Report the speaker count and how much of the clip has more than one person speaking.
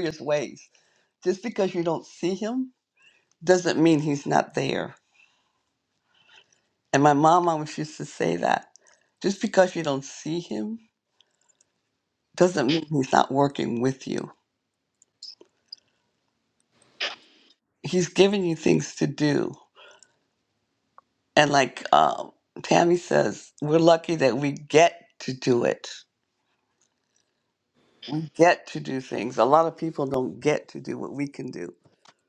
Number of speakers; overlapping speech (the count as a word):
one, no overlap